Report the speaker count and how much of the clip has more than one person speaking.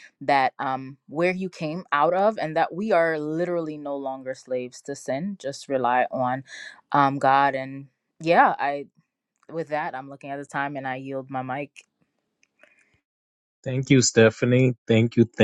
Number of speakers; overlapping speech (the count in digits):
2, no overlap